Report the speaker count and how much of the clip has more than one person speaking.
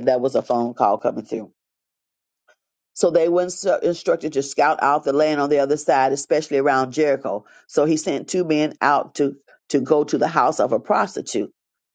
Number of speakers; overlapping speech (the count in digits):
1, no overlap